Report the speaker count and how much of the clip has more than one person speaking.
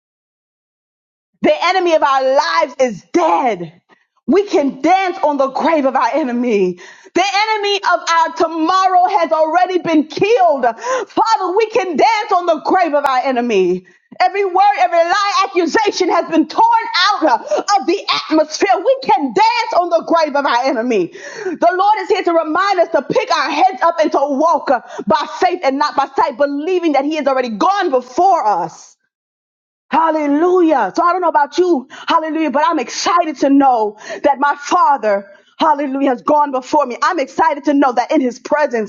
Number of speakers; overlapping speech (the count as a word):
one, no overlap